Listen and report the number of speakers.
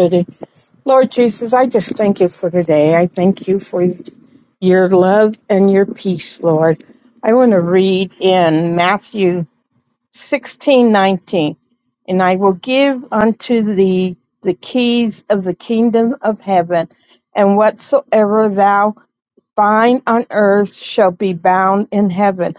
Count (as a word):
one